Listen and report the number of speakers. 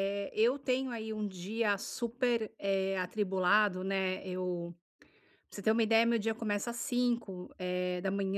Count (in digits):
1